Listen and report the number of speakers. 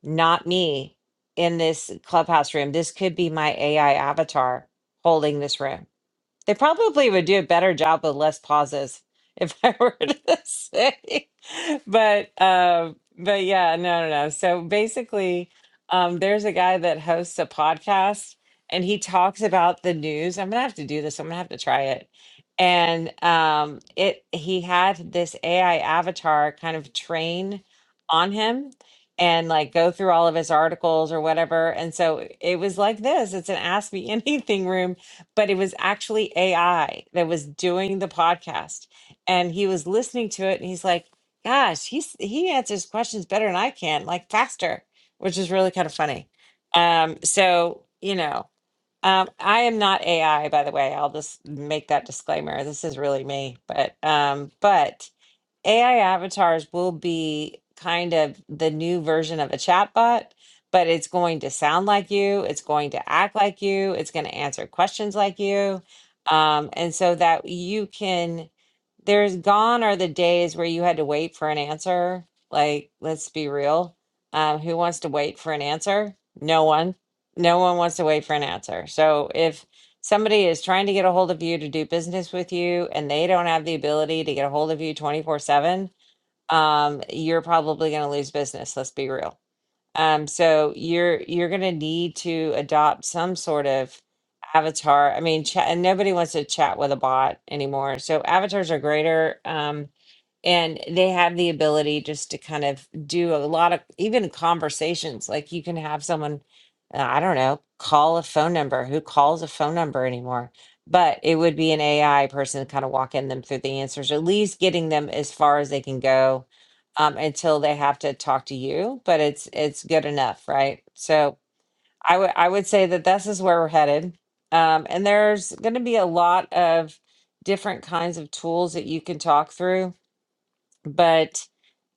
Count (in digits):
1